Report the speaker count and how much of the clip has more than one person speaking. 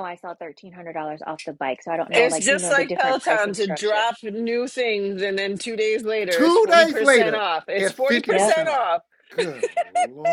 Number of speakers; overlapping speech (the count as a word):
three, about 38%